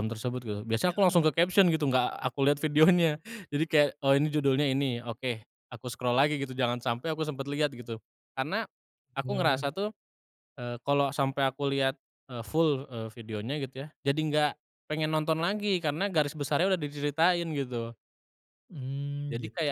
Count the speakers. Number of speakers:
2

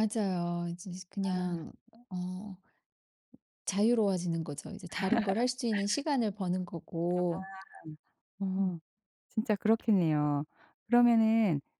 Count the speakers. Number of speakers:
2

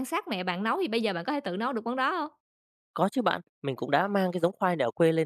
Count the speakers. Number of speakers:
2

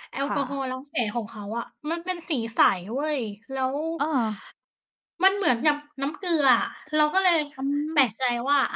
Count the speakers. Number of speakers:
2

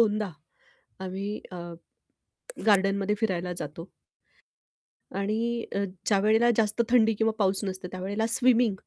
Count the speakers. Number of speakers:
1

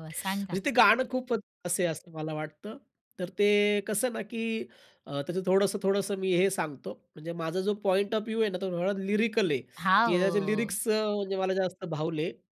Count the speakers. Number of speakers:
2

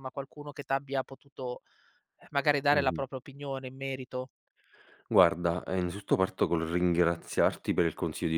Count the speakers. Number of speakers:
2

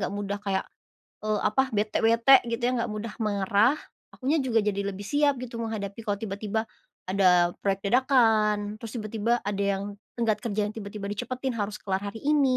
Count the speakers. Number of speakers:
1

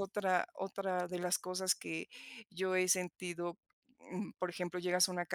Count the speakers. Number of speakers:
1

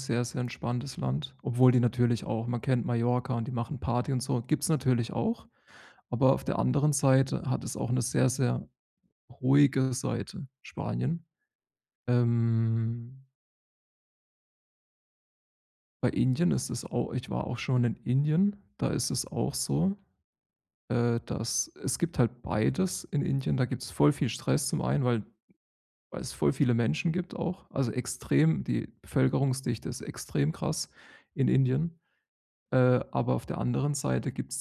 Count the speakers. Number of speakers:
1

